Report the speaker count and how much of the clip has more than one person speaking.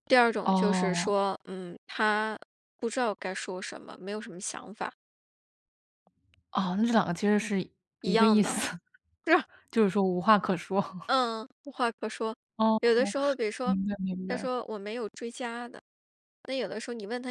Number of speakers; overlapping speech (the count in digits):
2, about 9%